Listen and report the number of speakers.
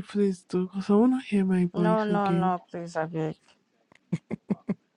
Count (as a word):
two